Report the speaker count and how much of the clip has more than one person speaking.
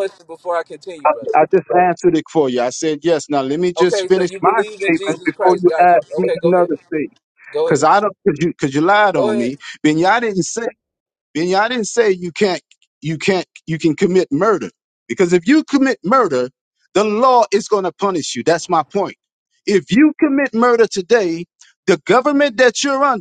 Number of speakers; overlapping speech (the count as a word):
two, about 16%